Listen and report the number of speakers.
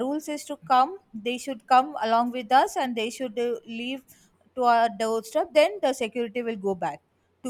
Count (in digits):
1